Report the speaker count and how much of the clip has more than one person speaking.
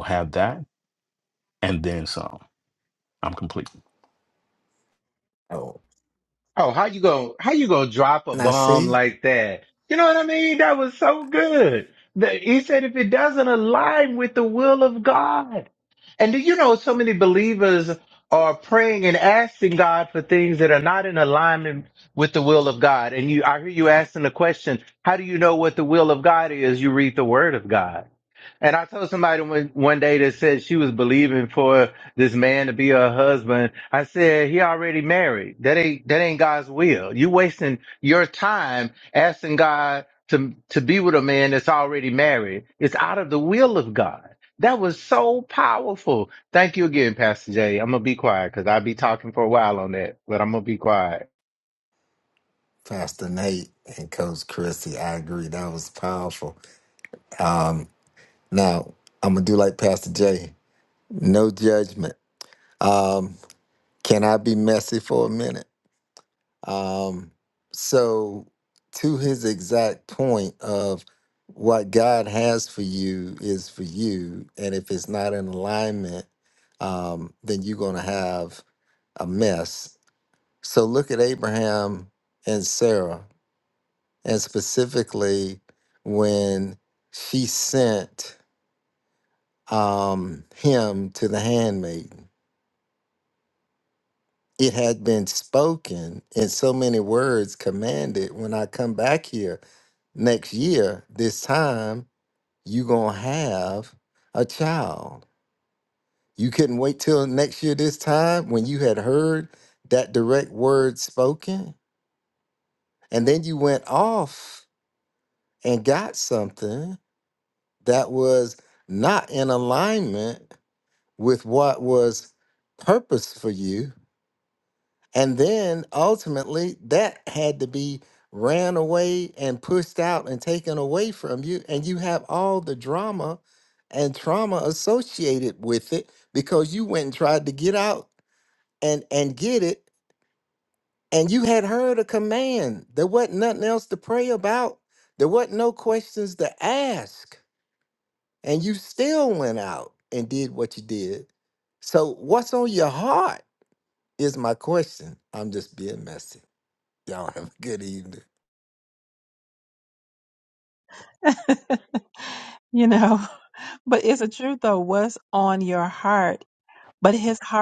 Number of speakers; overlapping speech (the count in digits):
4, under 1%